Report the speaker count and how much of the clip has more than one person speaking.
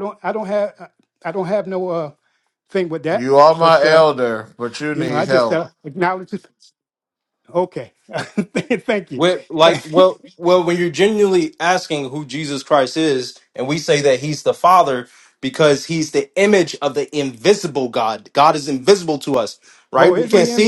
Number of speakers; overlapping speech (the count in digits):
3, about 9%